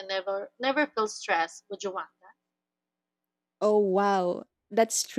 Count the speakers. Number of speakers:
2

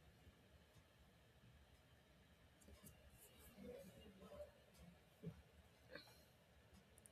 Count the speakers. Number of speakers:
0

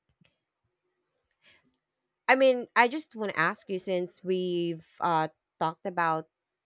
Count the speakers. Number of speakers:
1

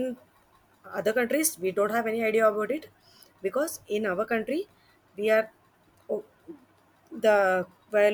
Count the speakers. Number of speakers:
1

